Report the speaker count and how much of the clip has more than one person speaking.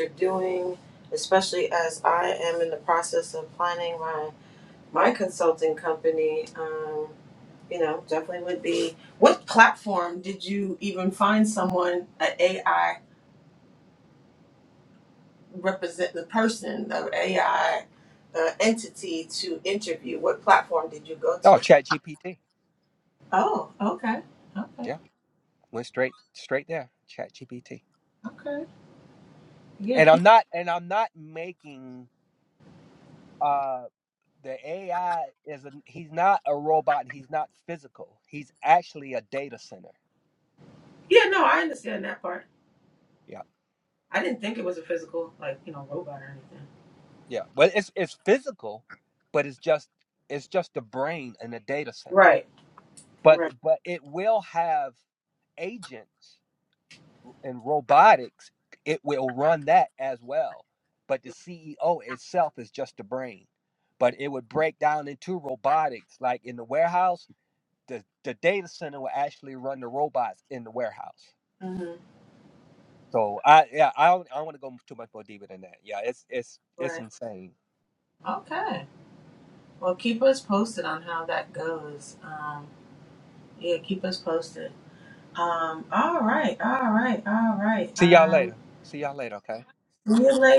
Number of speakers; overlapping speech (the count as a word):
two, about 2%